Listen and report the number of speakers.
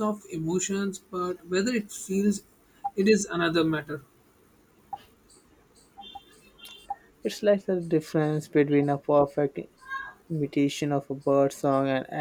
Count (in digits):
2